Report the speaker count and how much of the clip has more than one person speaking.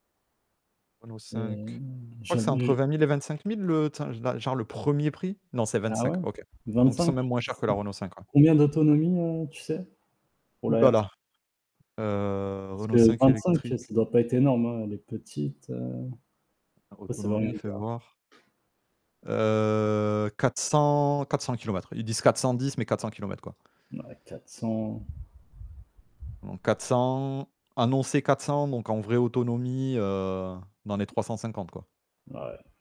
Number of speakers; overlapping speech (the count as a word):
two, about 12%